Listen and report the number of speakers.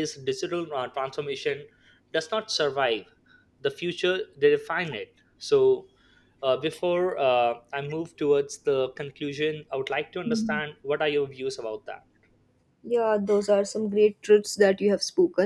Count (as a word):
two